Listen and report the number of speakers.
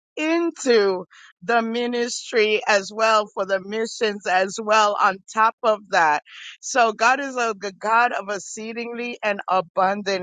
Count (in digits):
1